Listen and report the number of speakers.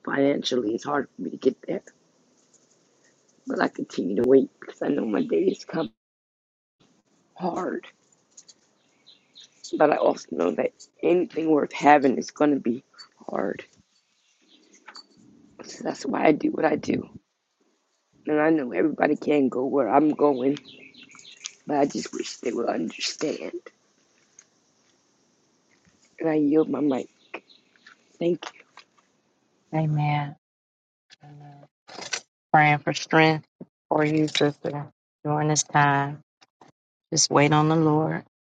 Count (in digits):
2